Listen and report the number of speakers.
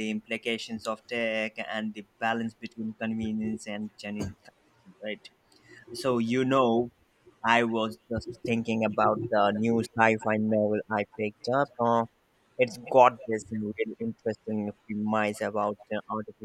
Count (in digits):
1